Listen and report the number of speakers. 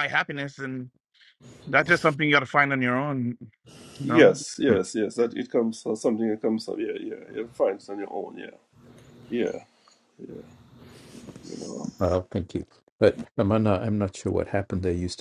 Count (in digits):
3